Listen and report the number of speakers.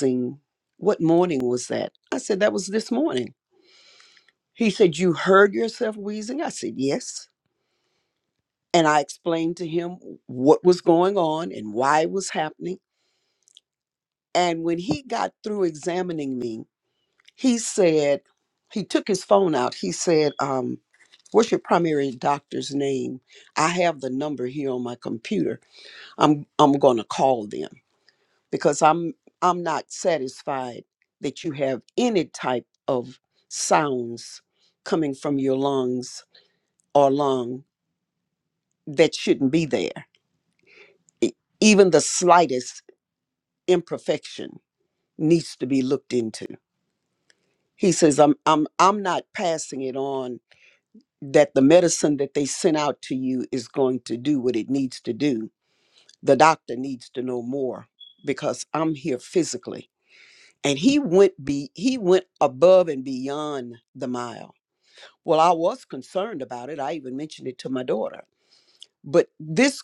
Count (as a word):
one